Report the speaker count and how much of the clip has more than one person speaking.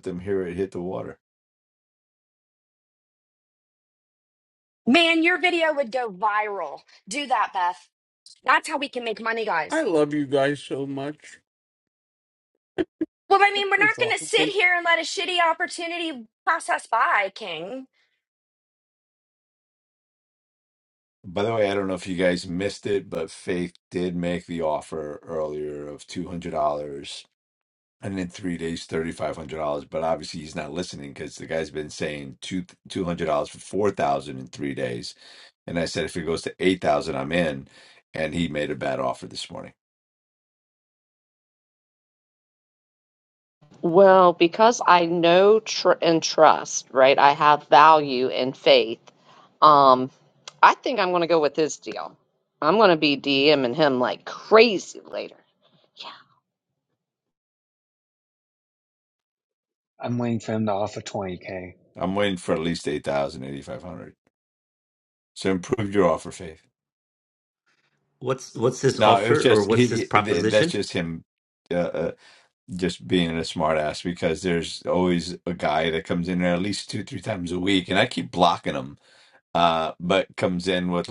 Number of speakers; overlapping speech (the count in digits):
6, about 3%